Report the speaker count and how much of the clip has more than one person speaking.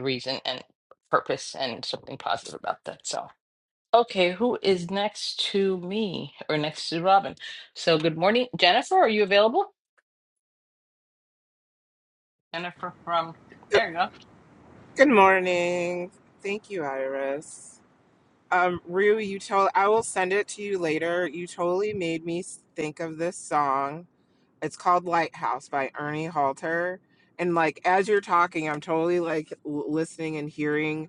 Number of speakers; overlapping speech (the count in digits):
2, under 1%